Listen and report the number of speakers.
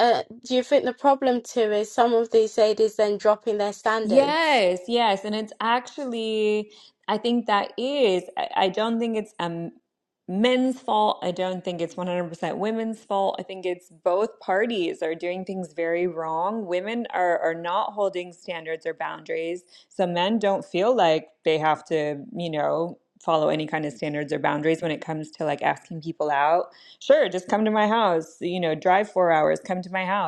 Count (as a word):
two